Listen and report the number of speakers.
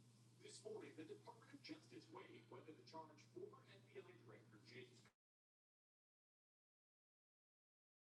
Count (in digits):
0